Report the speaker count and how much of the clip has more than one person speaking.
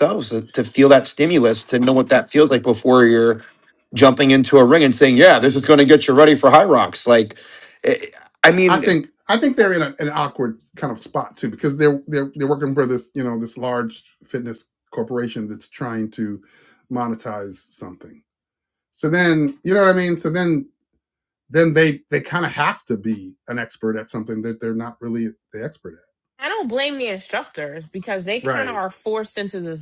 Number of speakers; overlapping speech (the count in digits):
3, about 2%